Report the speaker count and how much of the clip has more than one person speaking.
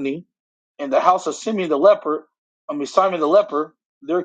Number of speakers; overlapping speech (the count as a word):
one, no overlap